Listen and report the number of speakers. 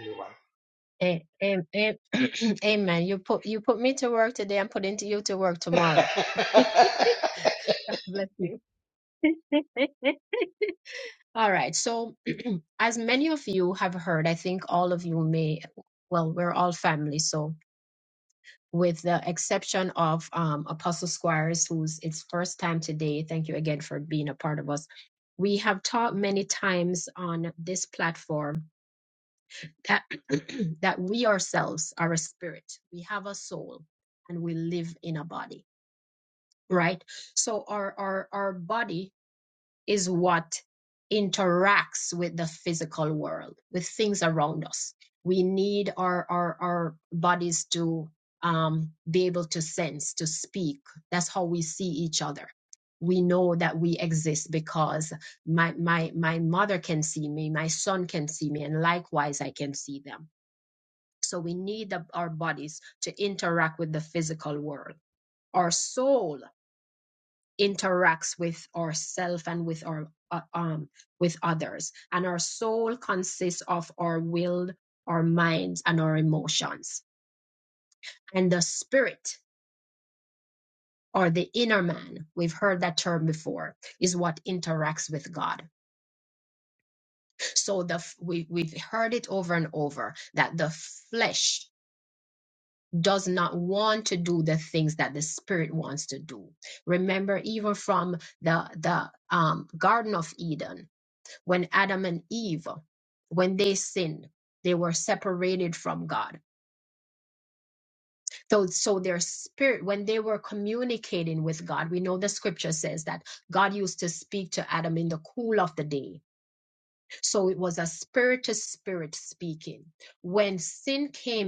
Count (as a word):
two